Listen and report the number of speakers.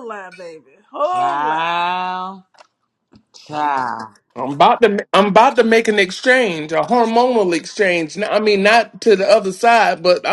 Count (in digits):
3